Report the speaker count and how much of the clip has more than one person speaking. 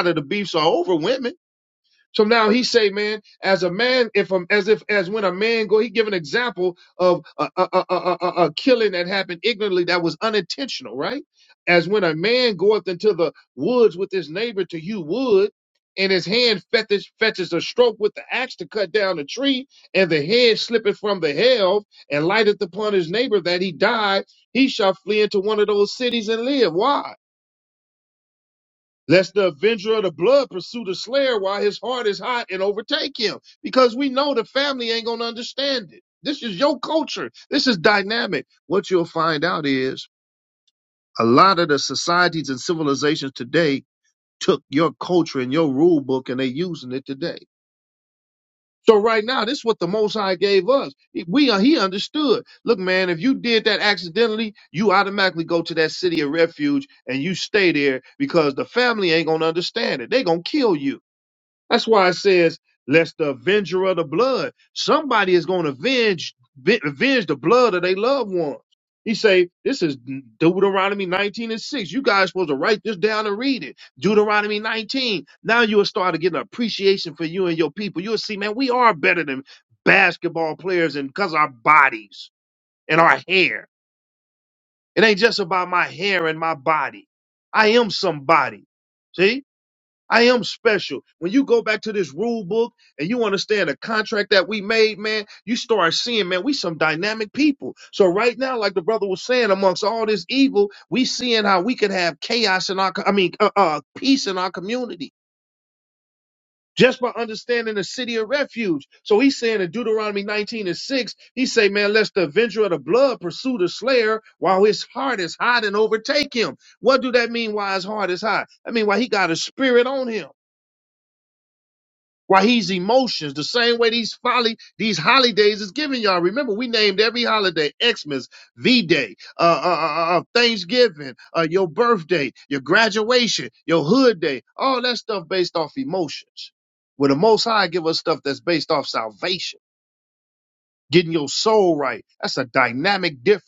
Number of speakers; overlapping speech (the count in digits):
1, no overlap